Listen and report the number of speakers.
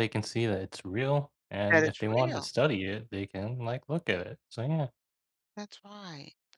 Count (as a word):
two